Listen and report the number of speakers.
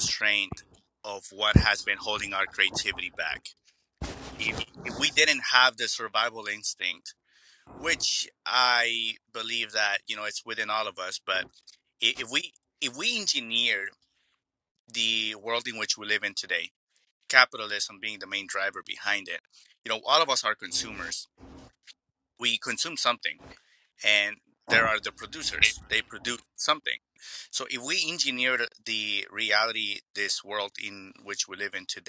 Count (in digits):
1